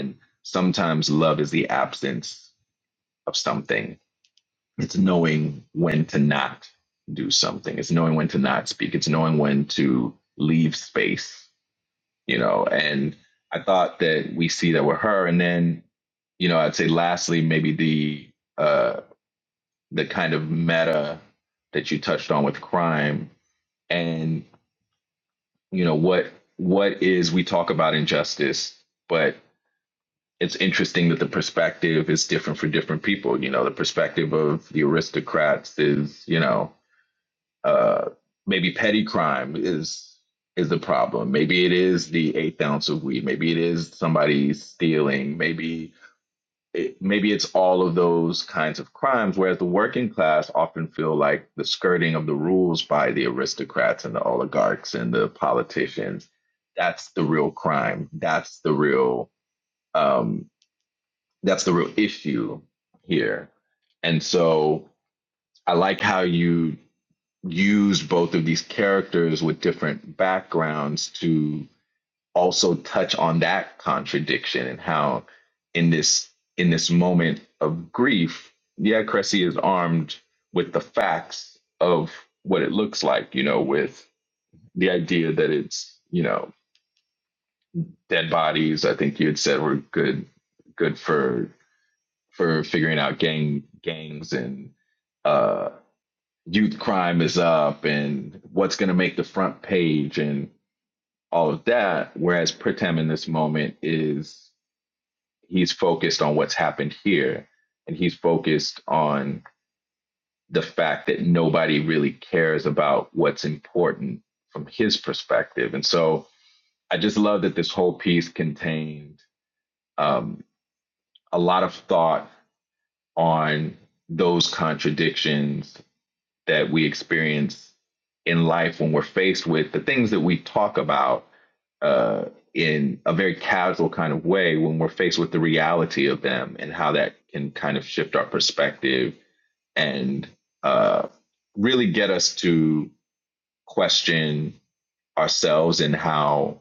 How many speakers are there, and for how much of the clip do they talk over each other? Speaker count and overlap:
one, no overlap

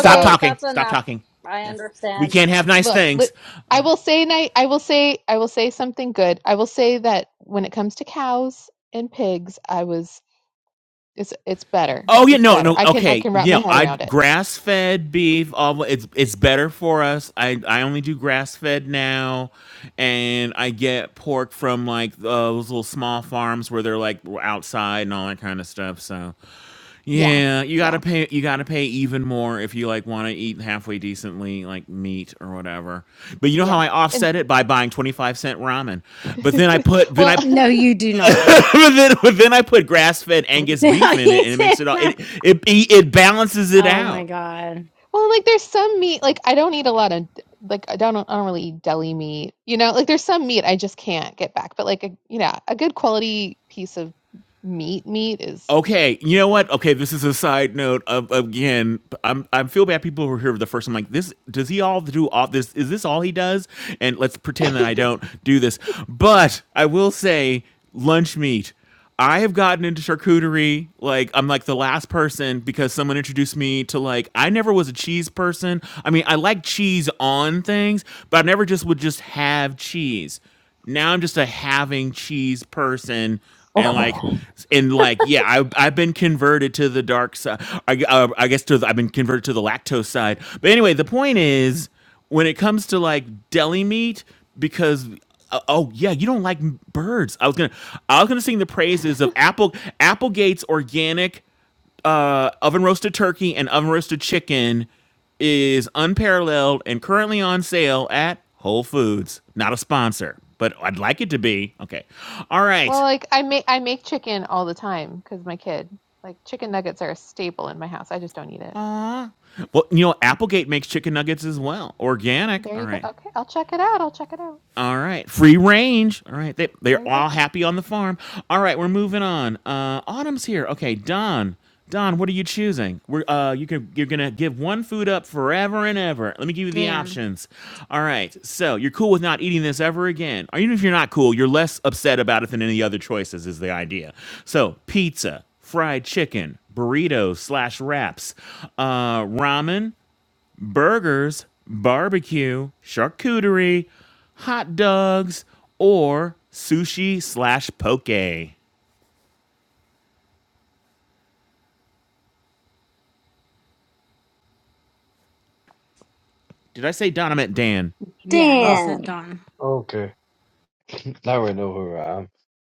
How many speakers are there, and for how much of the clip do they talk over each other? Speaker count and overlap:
five, about 6%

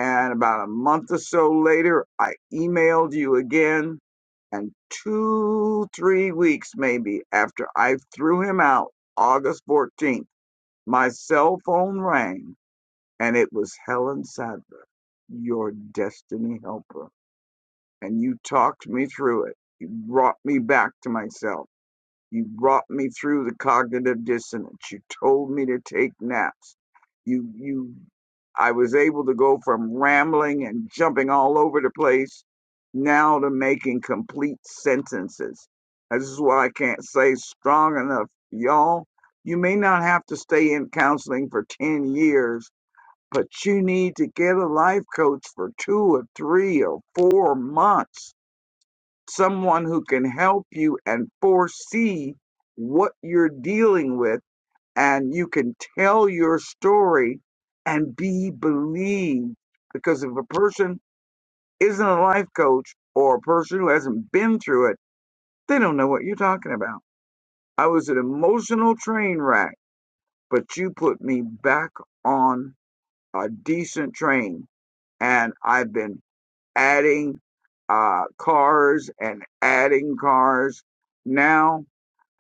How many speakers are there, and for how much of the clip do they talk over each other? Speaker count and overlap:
one, no overlap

